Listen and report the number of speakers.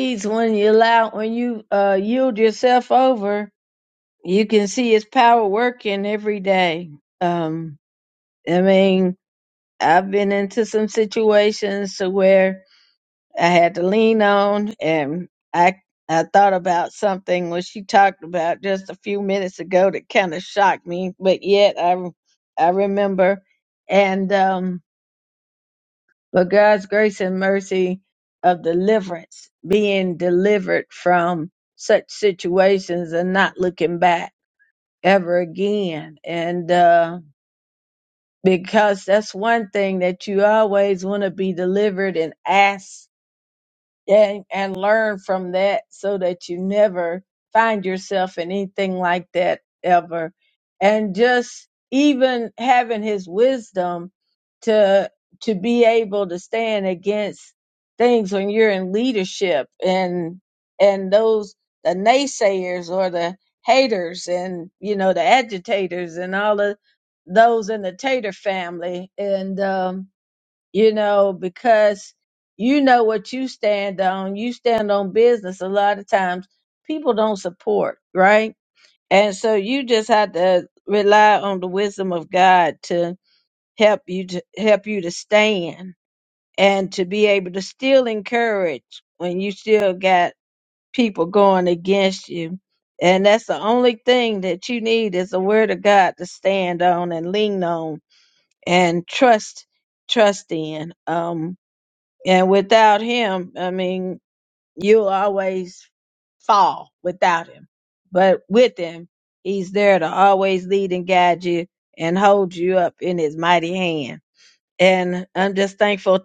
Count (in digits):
1